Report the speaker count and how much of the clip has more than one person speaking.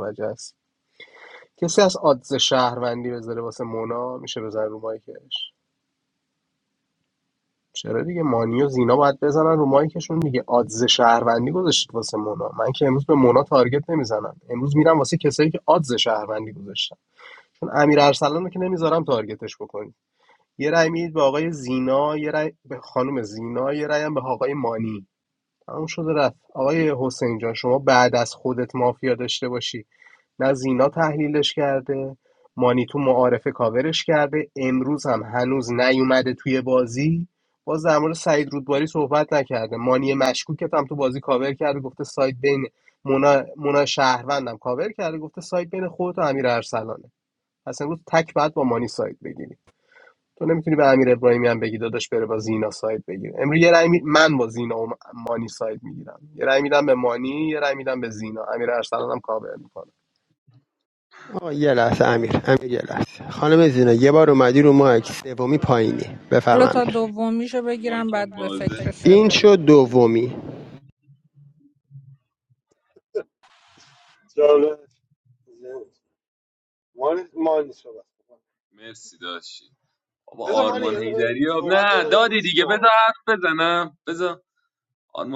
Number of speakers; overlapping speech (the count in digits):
5, about 5%